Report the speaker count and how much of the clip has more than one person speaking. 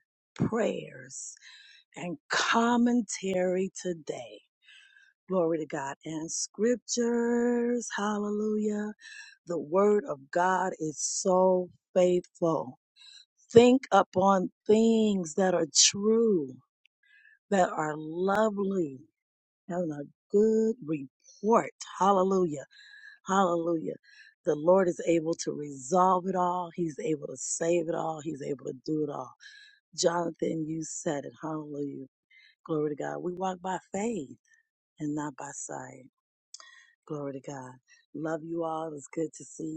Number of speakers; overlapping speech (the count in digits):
1, no overlap